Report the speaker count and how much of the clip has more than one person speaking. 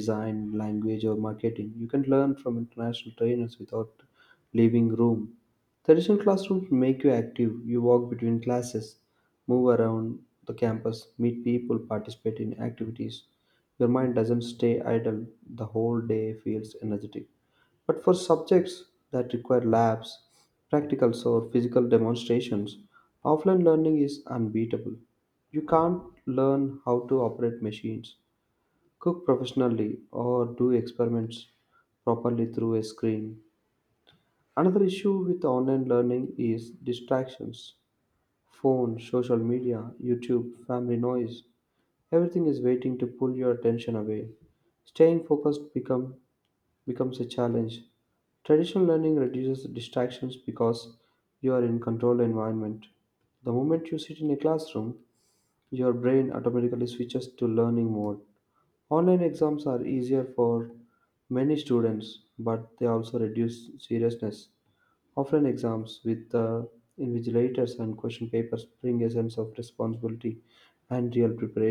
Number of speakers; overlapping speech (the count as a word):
one, no overlap